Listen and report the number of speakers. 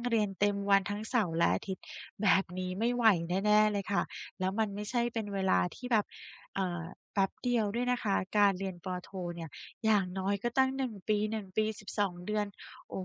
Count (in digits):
1